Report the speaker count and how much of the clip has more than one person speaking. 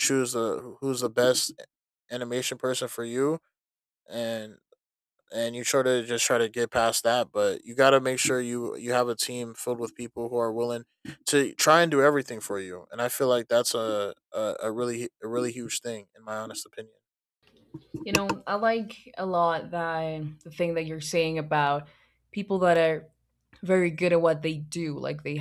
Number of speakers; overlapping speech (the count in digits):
2, no overlap